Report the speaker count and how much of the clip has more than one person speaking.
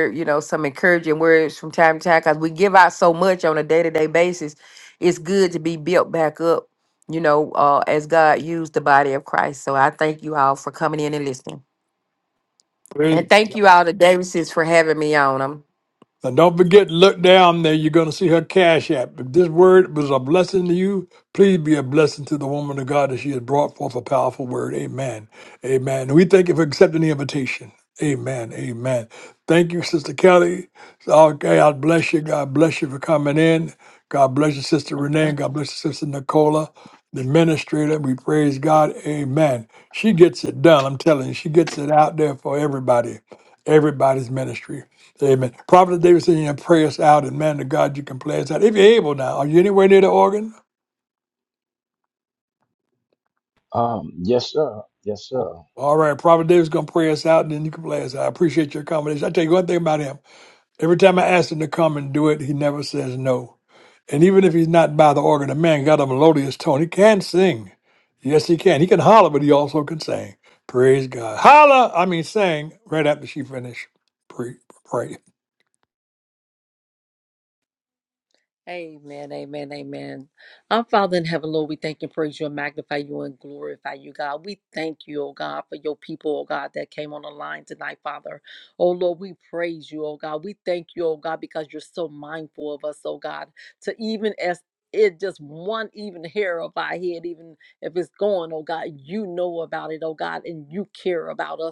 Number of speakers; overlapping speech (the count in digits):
4, about 1%